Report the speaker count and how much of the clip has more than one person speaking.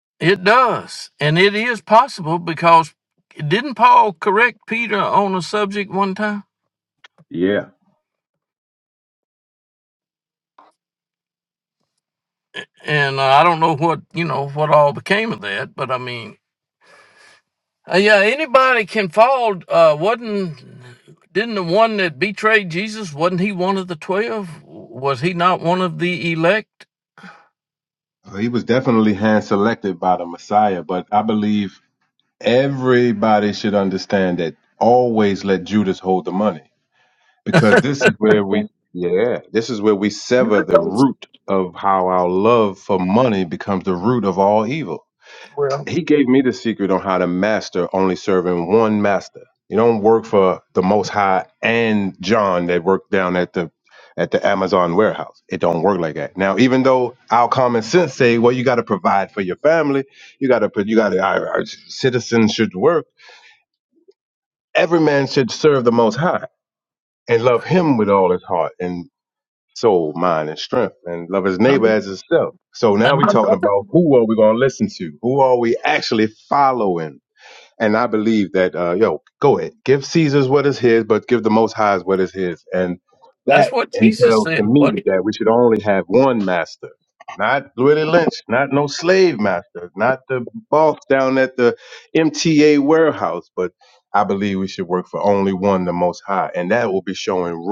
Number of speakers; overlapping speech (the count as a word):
two, about 2%